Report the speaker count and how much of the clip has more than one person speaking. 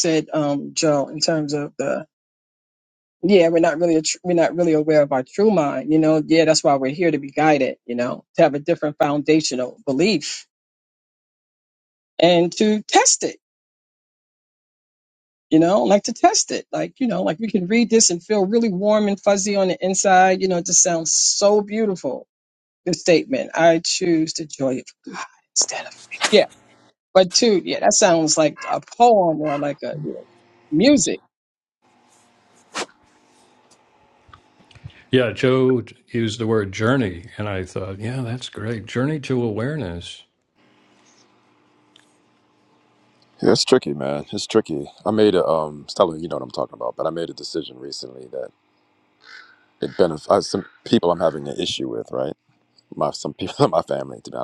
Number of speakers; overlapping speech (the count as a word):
three, no overlap